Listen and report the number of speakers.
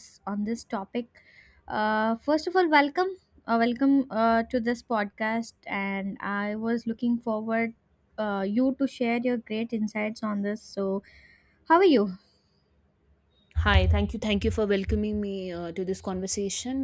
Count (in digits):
2